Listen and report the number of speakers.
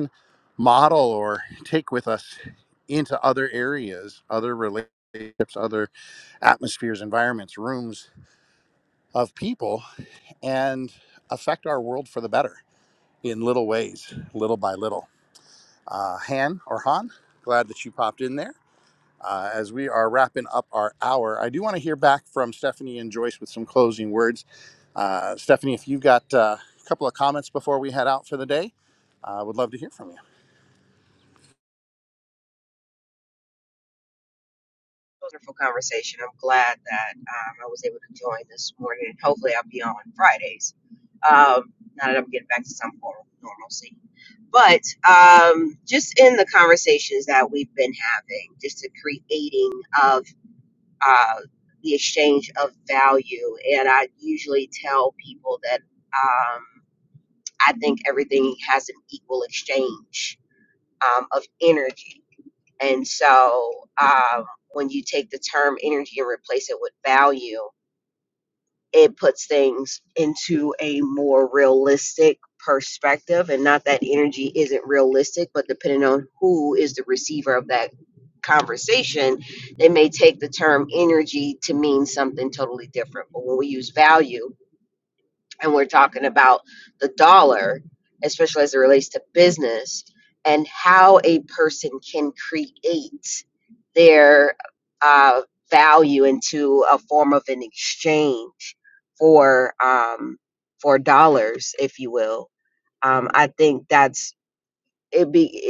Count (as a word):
two